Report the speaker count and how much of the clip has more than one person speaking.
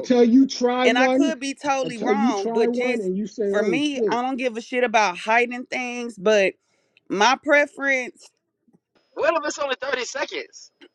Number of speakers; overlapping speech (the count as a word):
three, about 22%